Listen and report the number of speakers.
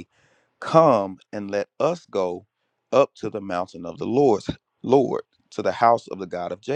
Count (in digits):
1